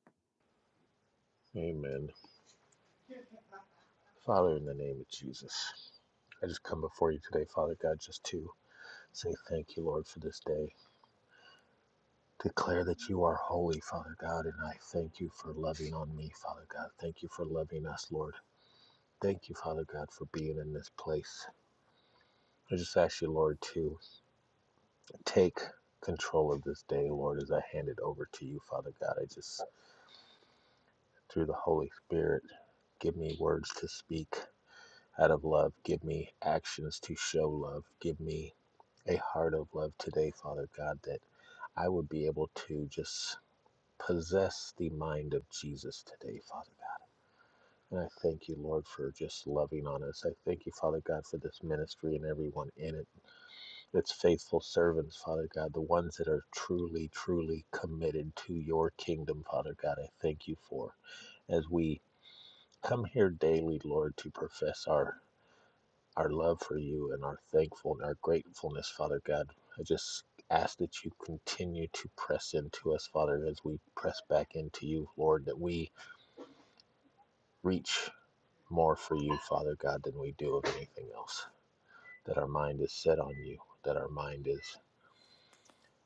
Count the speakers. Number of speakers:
one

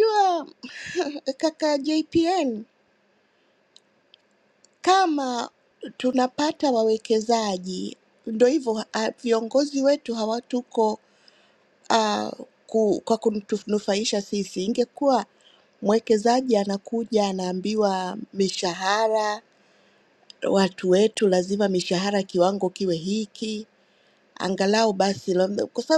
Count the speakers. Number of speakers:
one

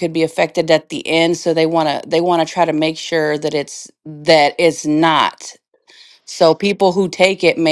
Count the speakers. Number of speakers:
one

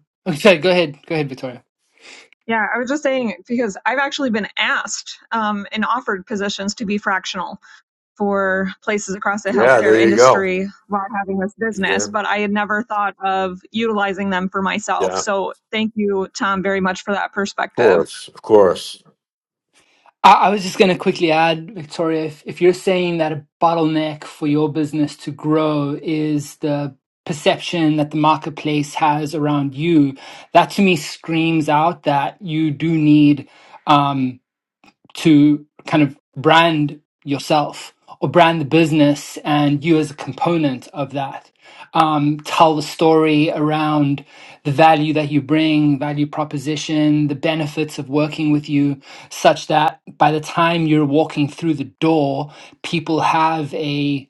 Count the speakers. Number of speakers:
three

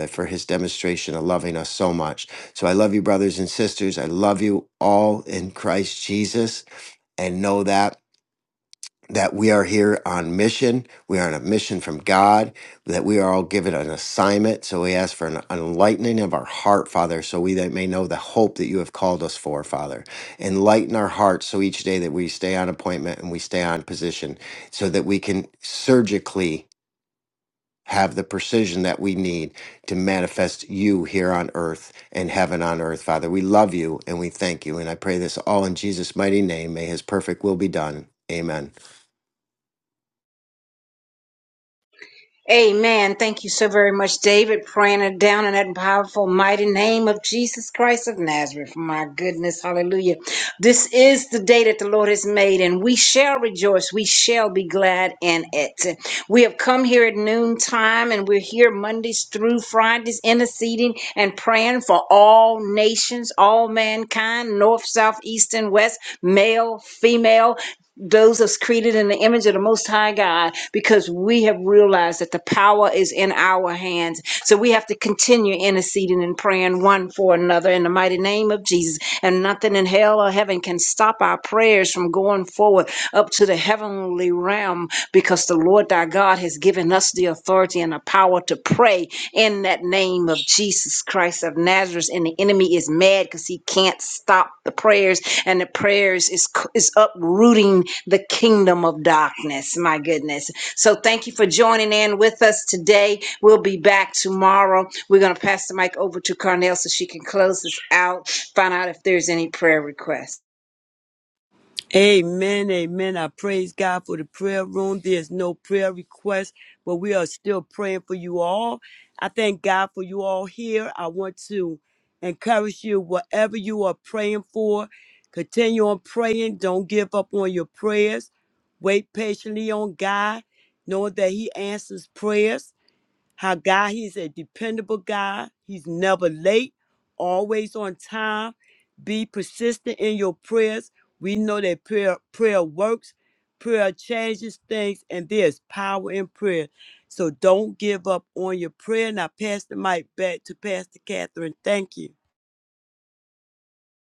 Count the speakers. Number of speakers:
three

